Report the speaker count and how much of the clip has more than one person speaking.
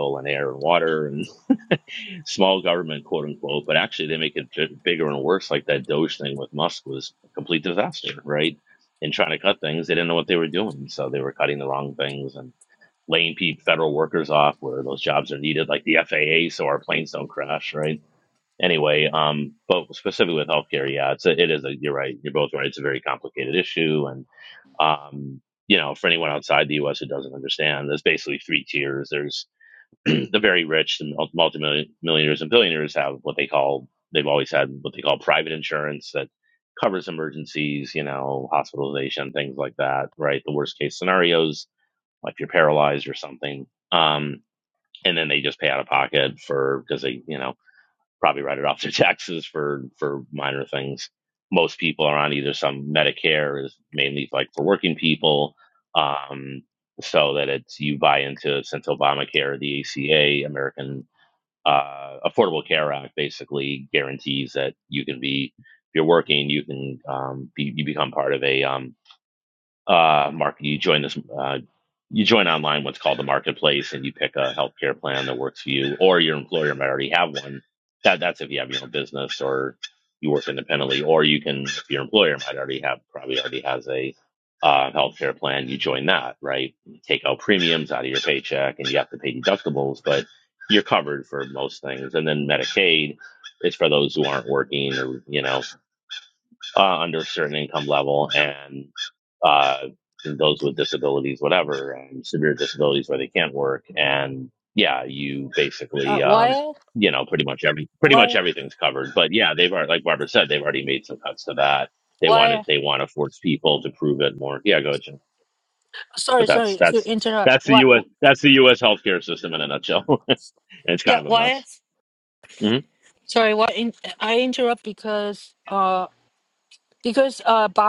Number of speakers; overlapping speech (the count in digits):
2, about 2%